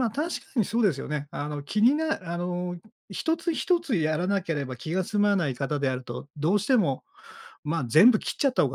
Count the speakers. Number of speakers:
1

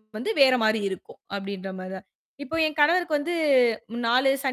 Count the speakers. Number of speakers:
1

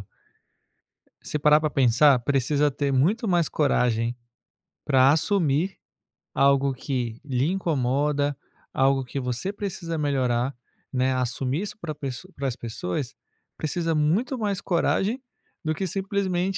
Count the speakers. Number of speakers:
1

